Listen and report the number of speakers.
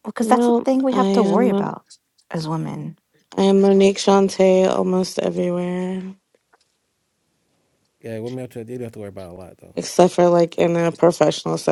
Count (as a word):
three